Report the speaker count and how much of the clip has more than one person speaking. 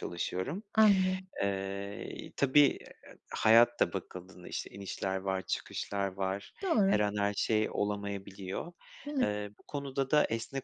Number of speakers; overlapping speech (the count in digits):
2, about 4%